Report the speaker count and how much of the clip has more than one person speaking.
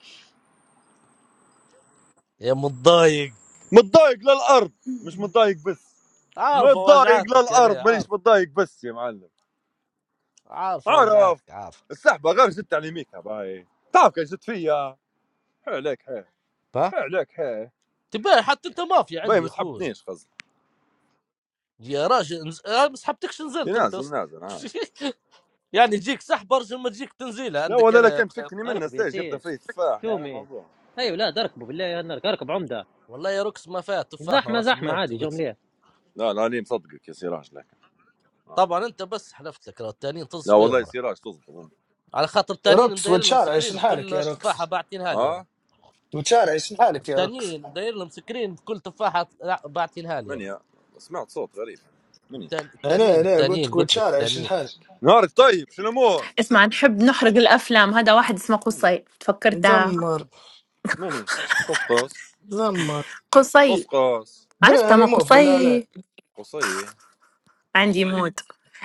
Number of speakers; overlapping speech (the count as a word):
five, about 18%